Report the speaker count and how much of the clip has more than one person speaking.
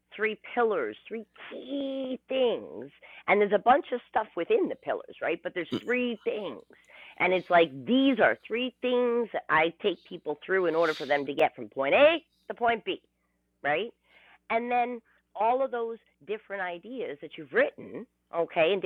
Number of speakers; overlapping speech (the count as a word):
one, no overlap